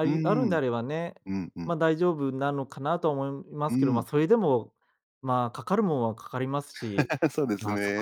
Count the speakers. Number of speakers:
2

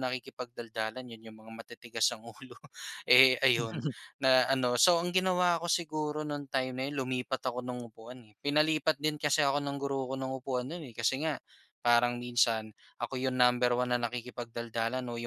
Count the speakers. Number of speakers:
1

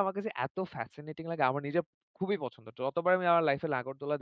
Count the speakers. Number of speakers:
1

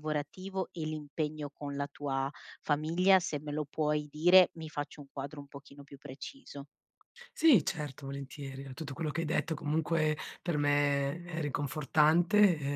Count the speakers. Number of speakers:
2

